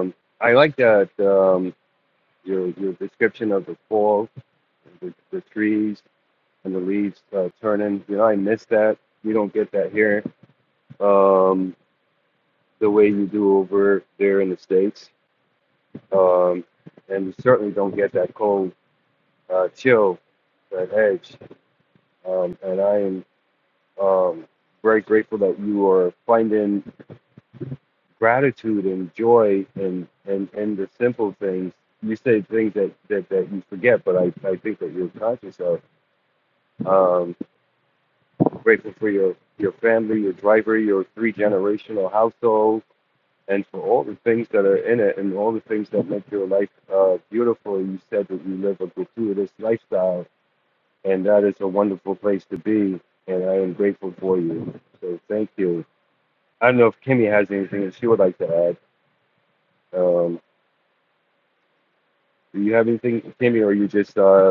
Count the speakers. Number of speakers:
1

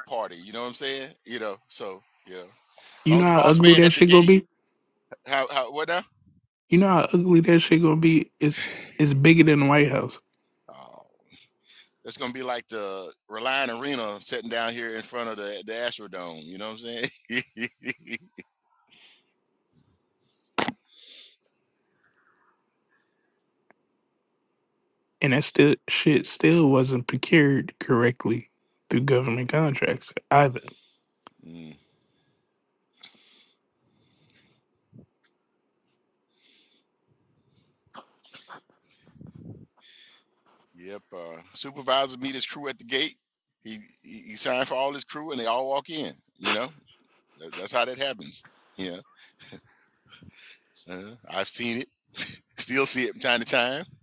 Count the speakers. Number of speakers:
2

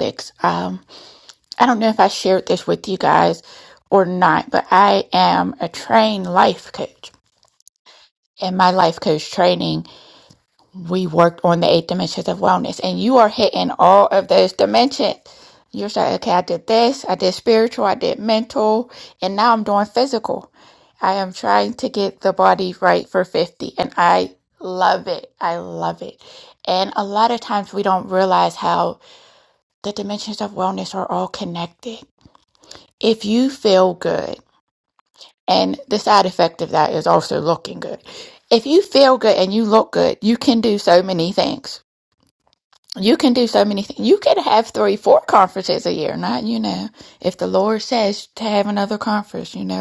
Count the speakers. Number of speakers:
1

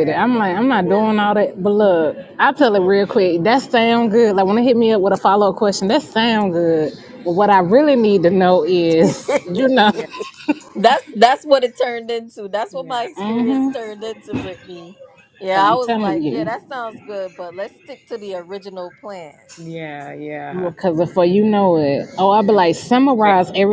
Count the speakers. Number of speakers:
3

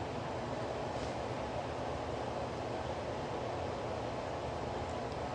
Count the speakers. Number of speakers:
0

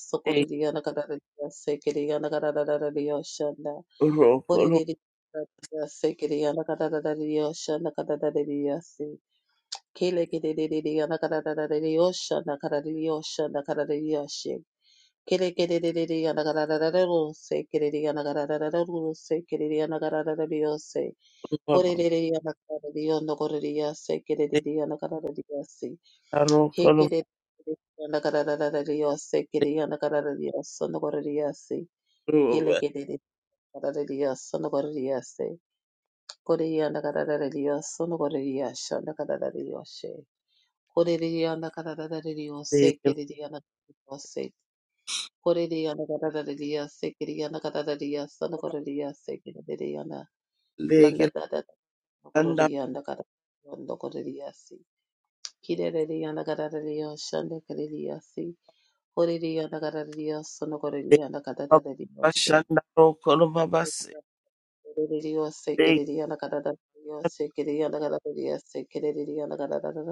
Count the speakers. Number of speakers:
2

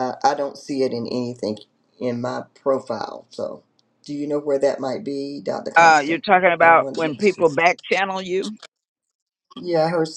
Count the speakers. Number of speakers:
2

